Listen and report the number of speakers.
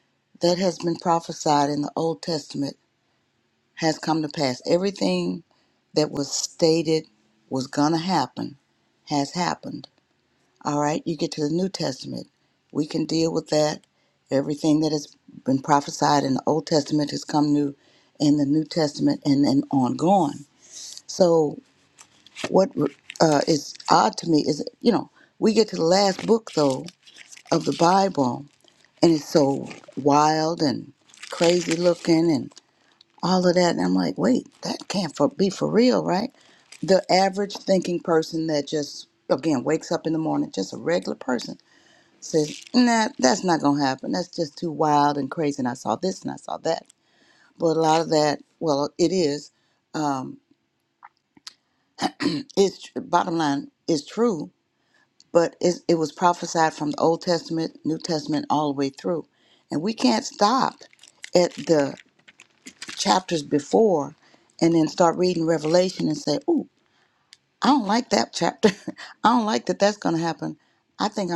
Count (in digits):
1